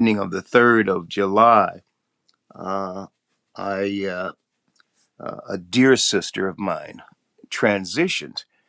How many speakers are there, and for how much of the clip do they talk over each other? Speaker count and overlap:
1, no overlap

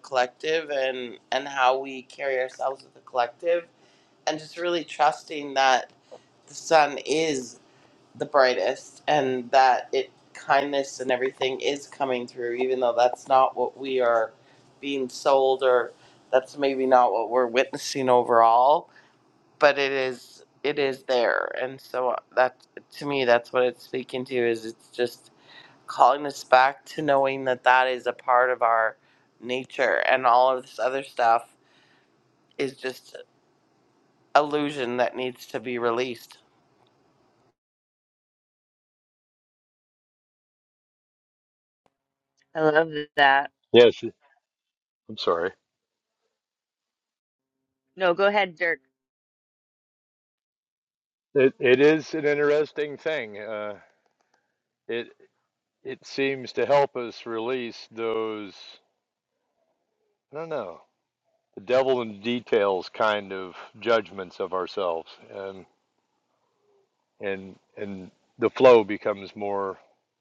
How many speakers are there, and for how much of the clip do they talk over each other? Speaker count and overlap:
3, no overlap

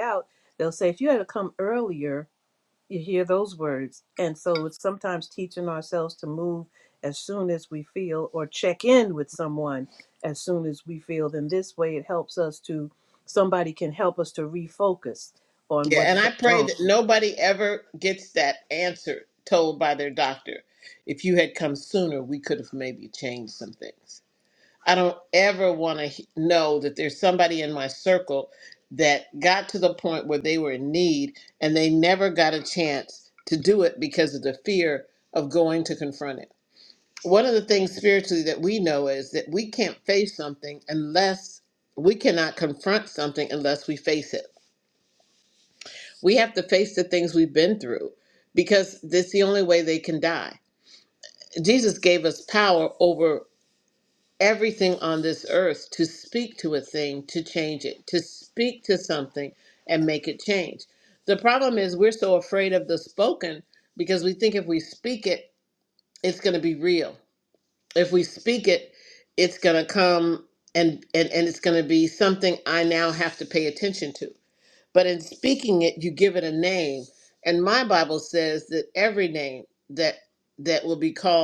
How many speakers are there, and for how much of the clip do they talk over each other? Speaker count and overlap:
2, about 1%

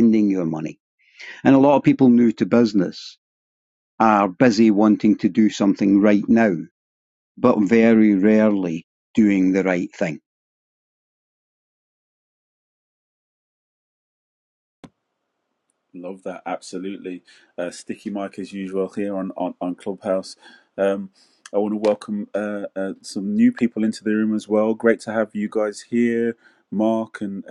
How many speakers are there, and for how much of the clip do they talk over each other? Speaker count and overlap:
2, no overlap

